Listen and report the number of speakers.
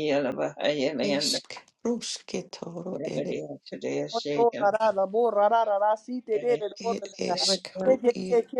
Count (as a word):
three